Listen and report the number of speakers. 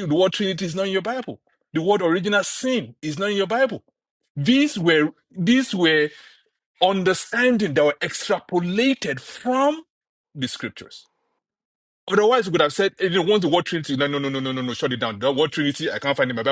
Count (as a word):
one